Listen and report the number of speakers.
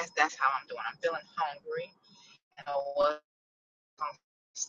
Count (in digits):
1